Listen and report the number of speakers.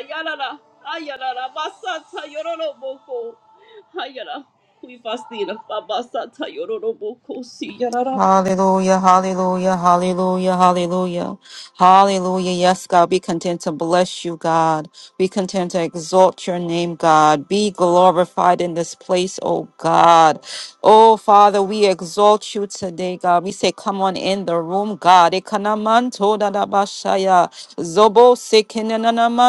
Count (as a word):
two